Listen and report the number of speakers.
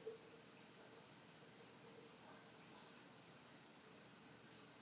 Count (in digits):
0